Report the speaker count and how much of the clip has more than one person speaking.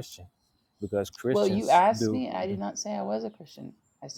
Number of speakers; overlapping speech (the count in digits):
2, about 23%